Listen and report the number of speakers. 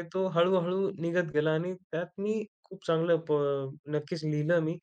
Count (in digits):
1